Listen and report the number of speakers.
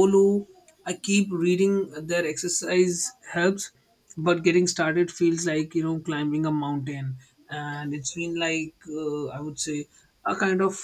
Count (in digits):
1